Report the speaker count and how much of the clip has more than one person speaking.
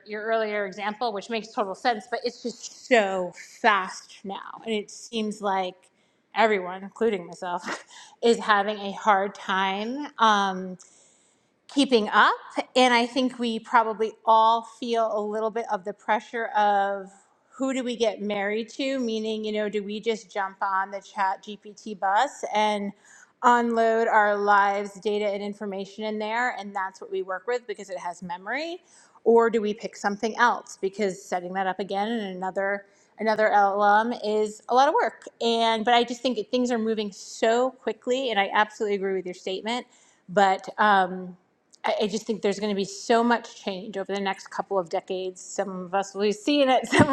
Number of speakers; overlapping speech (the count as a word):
one, no overlap